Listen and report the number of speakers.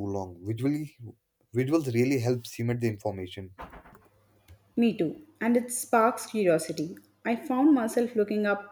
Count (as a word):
two